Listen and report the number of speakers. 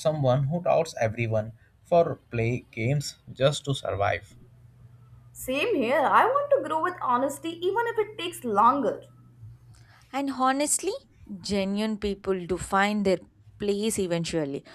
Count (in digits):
3